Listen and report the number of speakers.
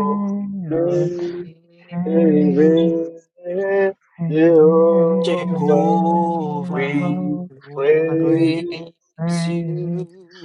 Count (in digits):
3